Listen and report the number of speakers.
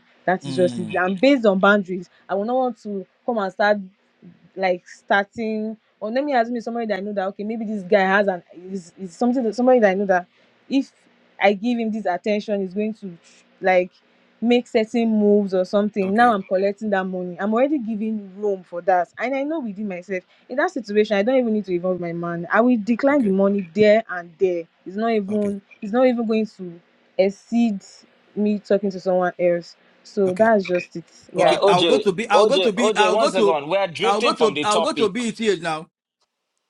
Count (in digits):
3